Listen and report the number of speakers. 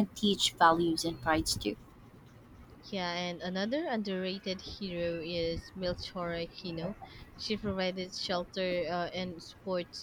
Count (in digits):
2